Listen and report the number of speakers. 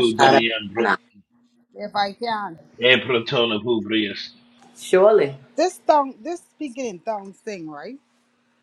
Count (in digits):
3